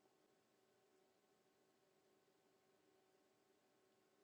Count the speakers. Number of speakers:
zero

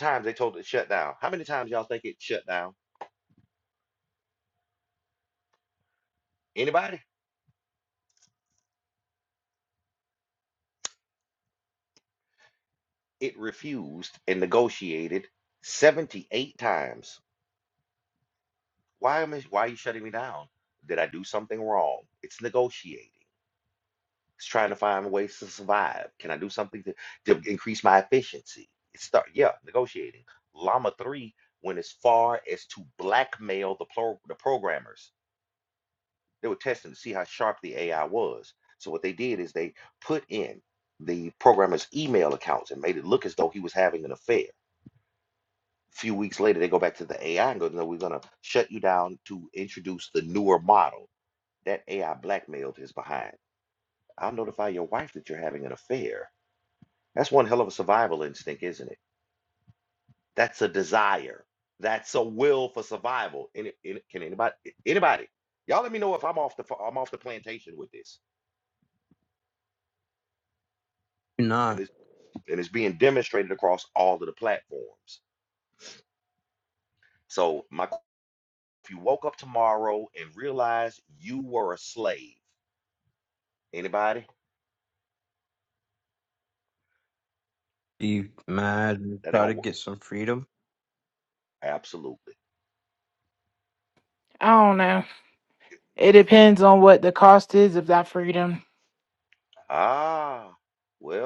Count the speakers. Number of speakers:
three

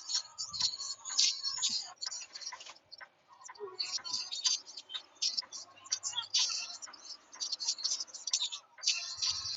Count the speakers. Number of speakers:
zero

